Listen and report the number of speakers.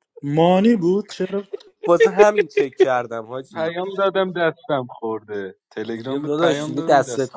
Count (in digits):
3